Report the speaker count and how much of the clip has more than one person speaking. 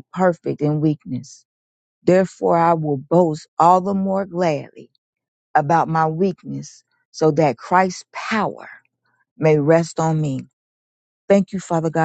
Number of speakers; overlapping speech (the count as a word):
one, no overlap